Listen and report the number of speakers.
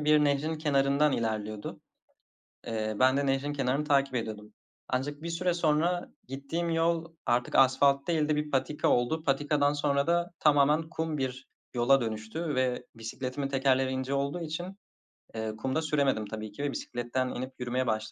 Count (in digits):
1